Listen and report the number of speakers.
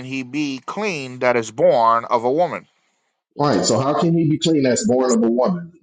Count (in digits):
2